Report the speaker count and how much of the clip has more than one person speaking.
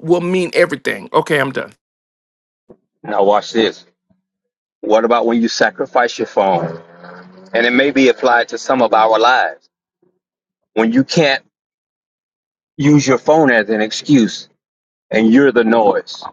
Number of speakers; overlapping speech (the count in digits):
2, no overlap